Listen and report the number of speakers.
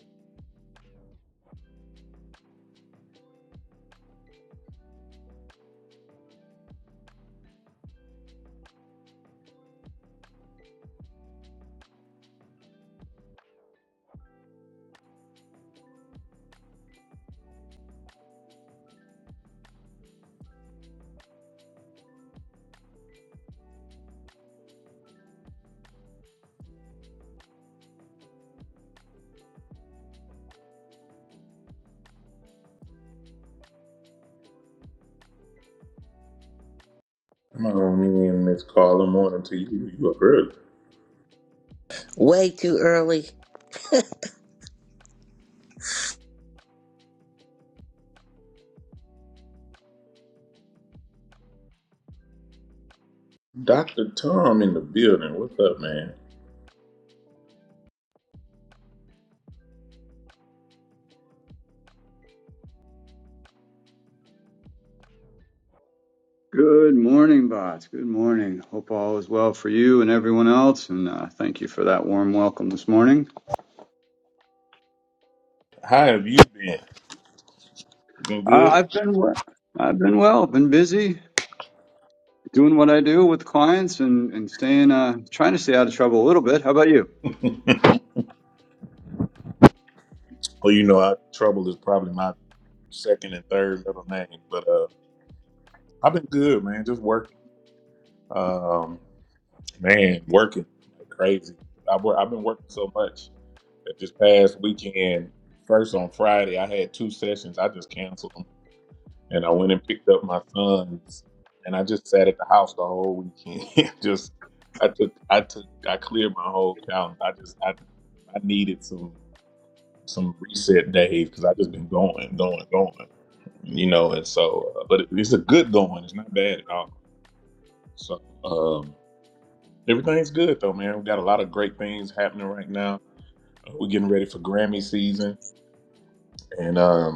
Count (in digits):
3